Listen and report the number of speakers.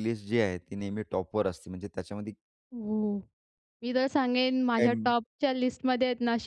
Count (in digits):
2